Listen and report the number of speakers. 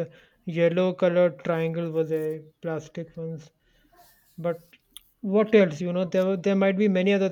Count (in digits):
1